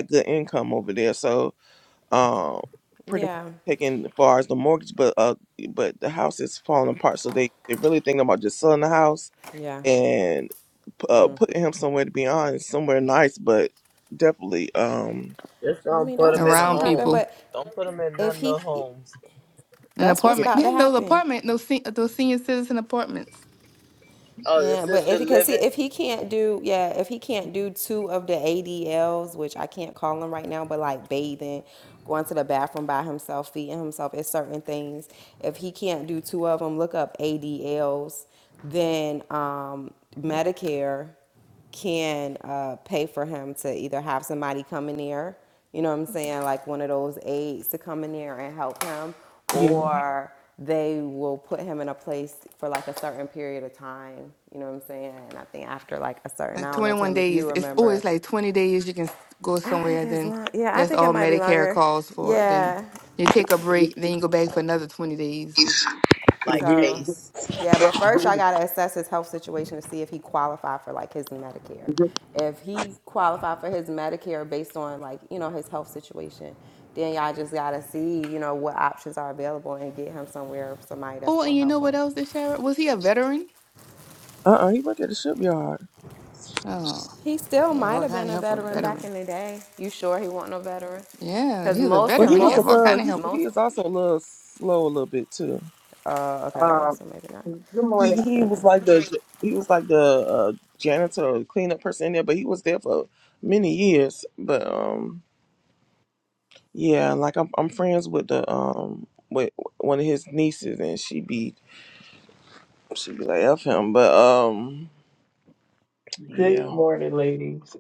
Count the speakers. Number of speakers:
five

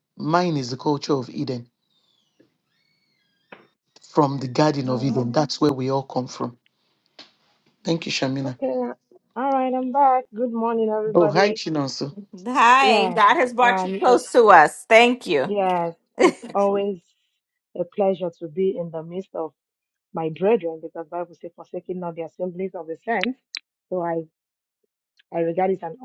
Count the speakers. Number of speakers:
three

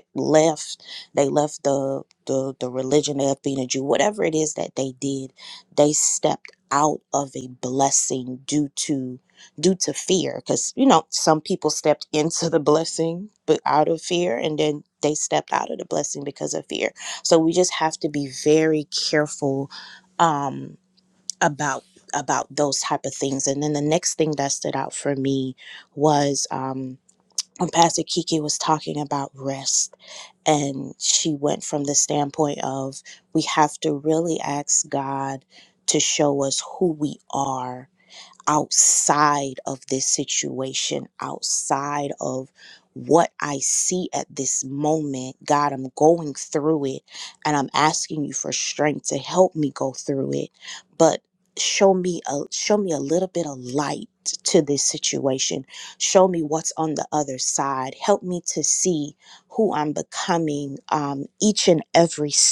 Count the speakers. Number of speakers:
one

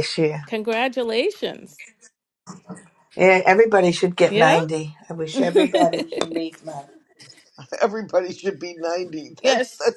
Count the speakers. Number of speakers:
three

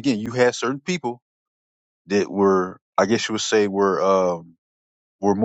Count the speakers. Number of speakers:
one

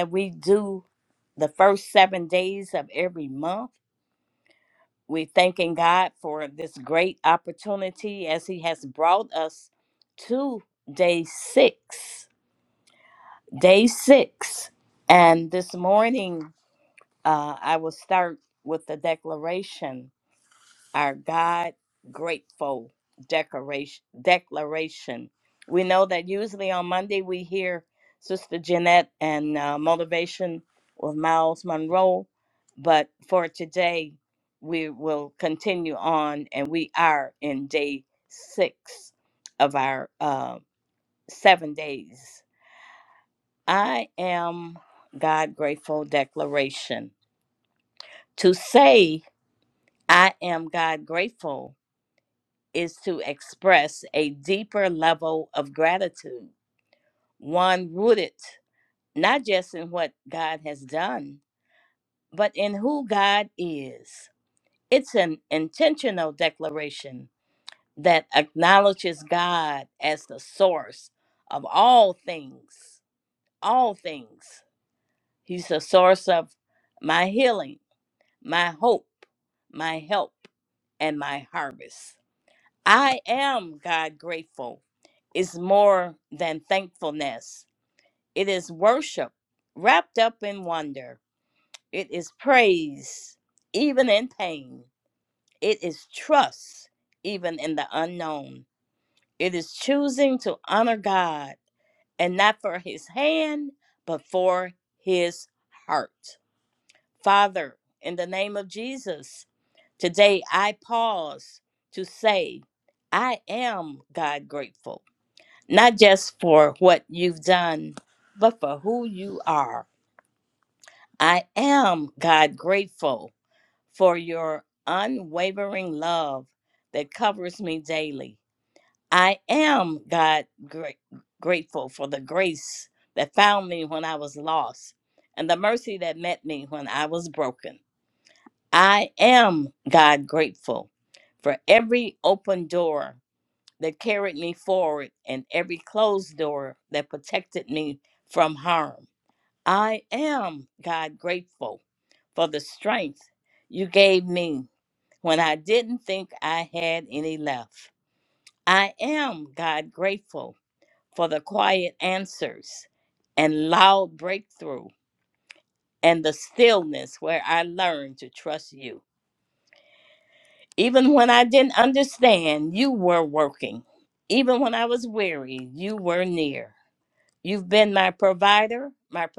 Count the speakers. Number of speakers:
one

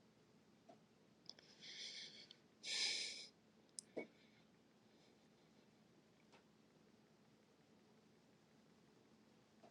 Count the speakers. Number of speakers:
zero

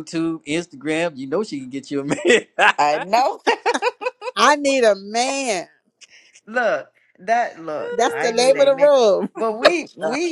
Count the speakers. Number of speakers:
three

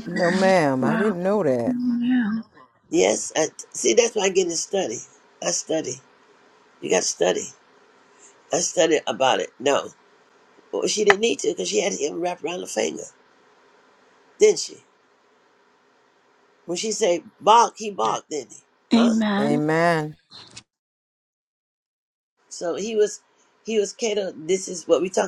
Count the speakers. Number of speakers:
three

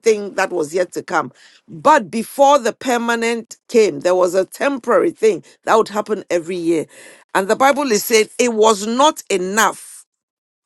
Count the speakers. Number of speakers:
one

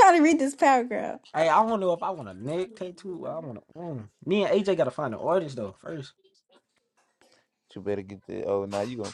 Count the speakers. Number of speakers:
three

